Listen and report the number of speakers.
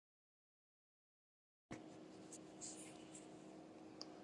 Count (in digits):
0